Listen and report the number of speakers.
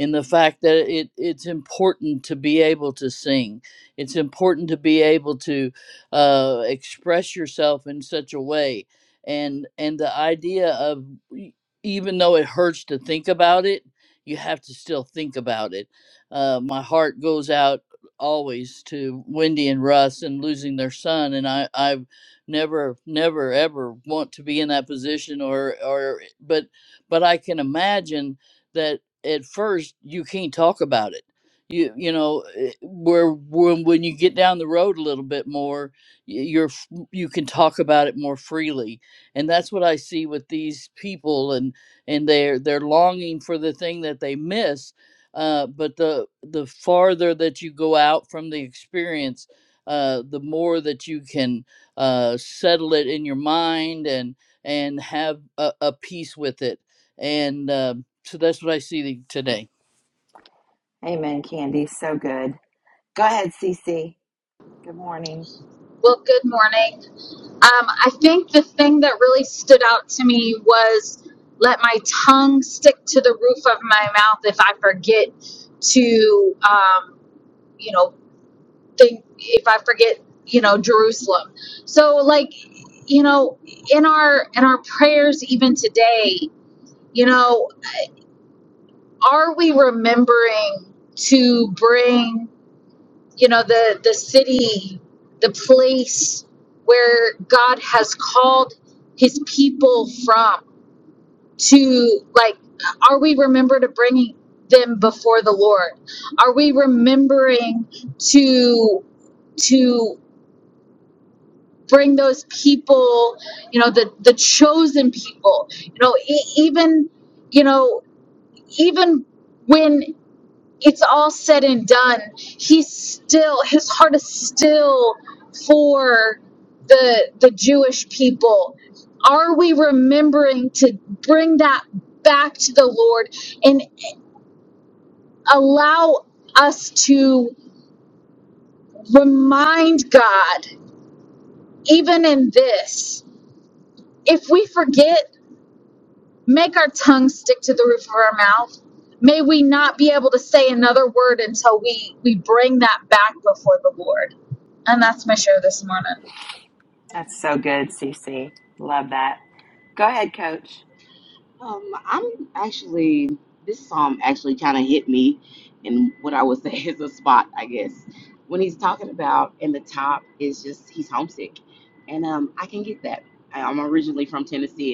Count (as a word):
four